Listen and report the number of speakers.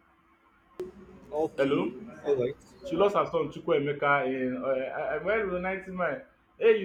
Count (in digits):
2